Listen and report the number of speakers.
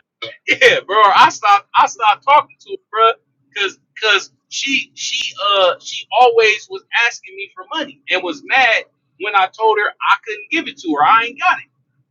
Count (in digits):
1